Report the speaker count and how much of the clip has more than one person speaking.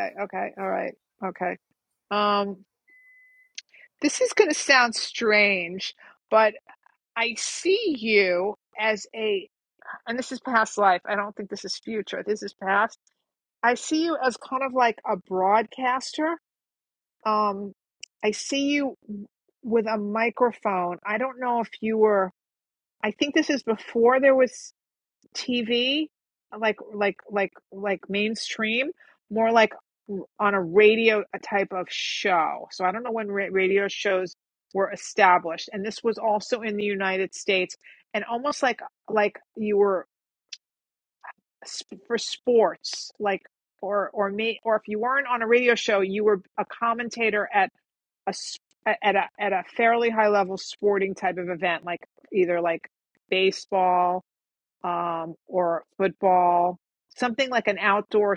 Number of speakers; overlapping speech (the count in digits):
1, no overlap